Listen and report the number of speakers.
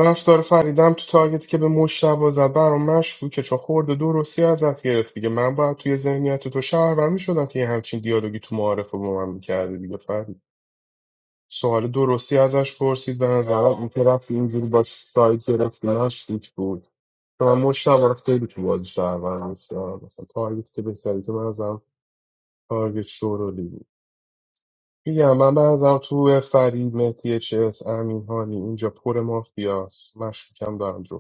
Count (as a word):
one